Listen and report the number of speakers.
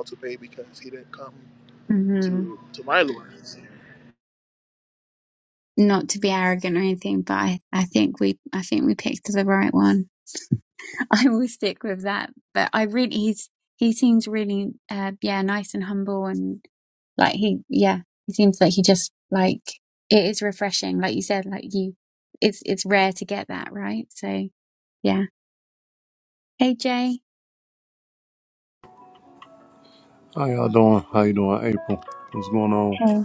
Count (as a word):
three